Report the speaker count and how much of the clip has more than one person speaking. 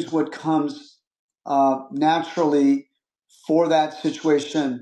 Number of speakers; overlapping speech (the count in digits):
1, no overlap